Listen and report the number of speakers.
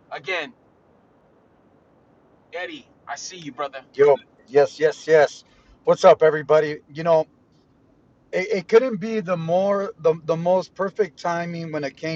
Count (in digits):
2